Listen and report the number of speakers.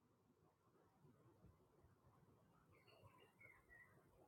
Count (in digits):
0